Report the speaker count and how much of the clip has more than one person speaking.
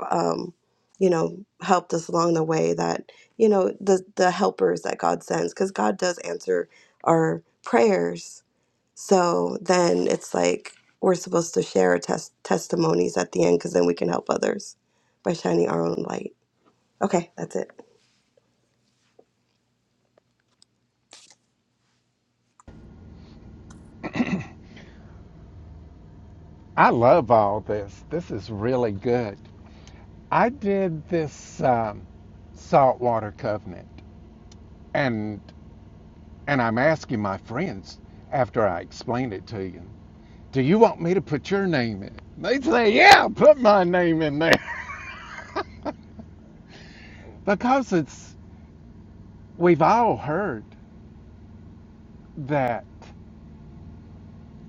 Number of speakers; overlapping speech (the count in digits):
2, no overlap